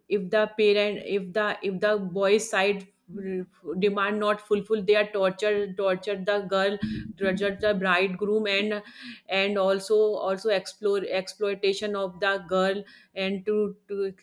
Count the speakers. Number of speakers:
1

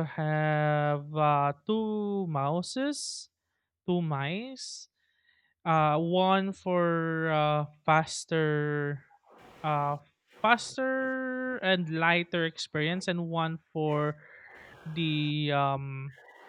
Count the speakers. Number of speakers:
1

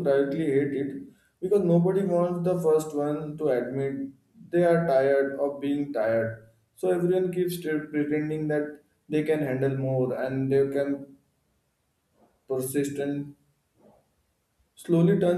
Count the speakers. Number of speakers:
1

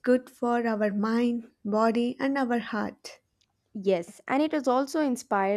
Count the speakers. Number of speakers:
2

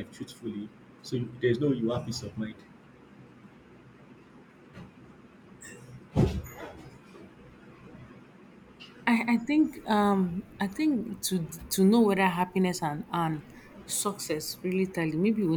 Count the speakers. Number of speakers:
2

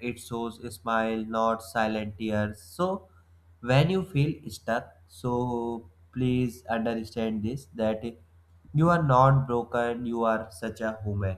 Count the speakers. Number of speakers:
1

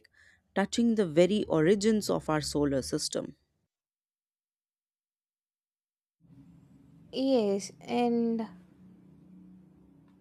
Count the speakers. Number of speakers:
2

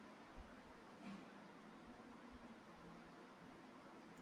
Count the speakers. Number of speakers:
0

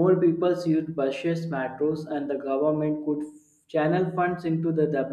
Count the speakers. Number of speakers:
1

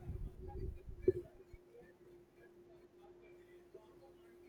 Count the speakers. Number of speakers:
0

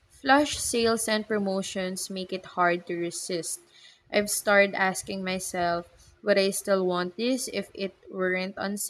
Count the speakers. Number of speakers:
1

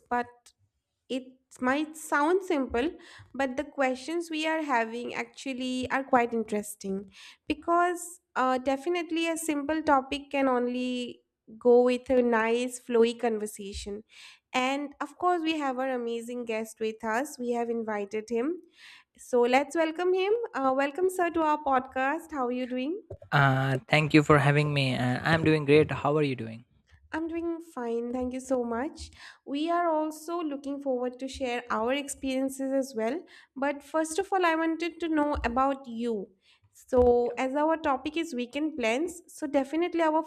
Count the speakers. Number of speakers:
2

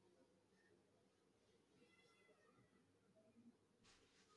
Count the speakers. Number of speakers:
0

